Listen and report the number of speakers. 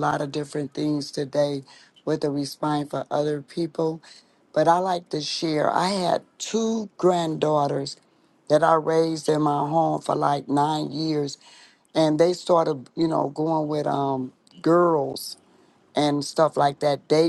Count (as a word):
one